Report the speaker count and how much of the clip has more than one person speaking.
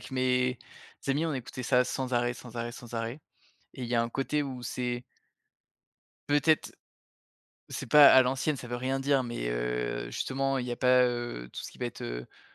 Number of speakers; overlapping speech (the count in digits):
1, no overlap